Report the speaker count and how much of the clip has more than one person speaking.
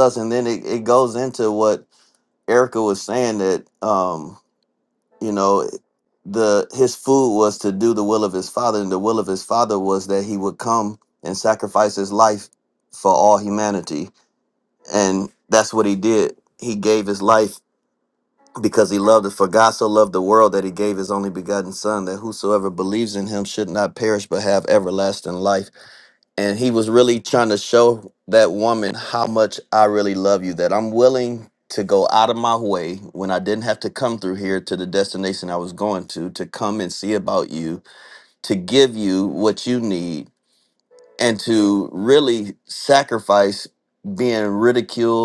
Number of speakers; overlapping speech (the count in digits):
1, no overlap